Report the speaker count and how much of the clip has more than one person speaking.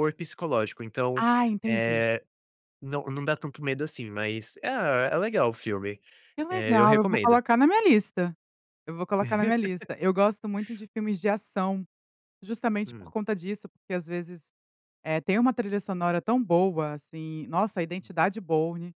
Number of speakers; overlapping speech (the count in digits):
2, about 8%